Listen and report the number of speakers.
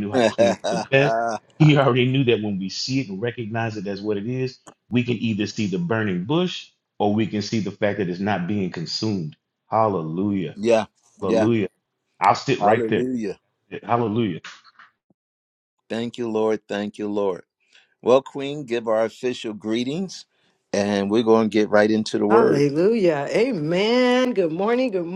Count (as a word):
three